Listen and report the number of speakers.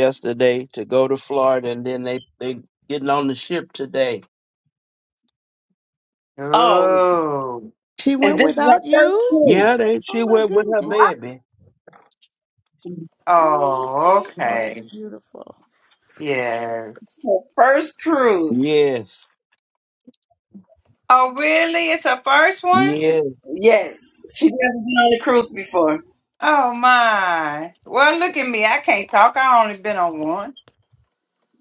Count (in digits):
4